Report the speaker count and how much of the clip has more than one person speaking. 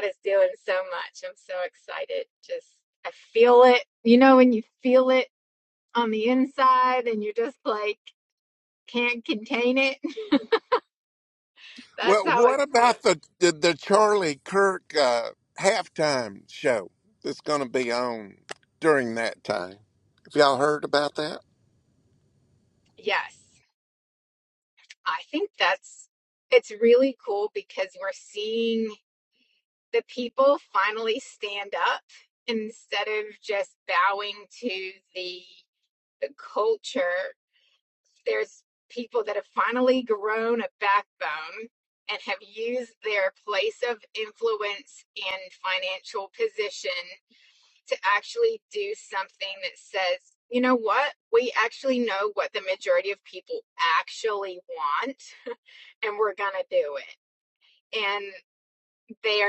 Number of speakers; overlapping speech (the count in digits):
2, about 2%